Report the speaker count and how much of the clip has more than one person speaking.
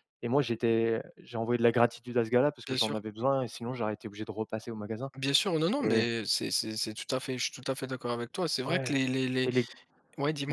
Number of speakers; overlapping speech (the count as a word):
two, about 10%